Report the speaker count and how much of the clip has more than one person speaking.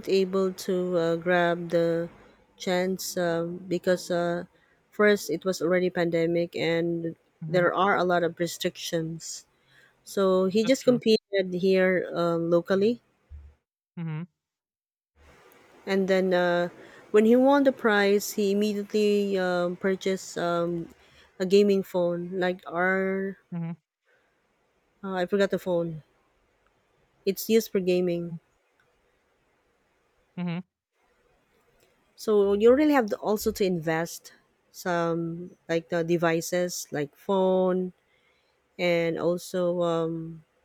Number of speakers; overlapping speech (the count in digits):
2, about 1%